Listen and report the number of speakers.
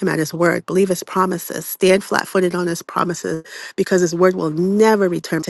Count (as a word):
one